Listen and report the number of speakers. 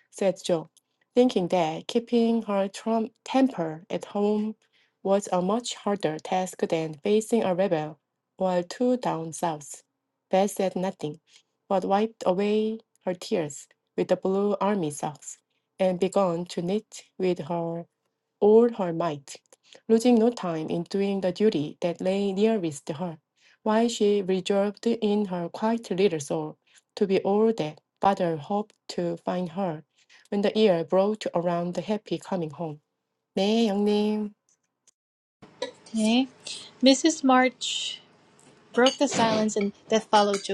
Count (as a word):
two